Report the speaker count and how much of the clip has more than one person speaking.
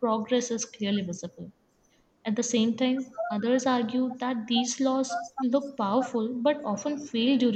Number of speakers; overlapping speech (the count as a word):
one, no overlap